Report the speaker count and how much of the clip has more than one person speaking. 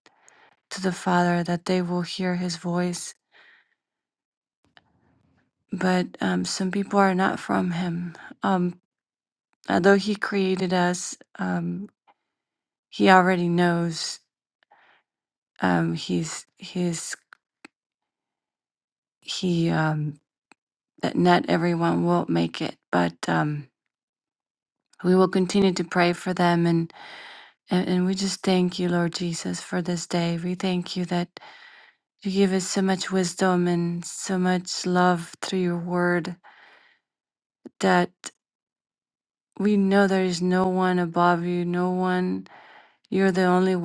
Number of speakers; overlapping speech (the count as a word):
one, no overlap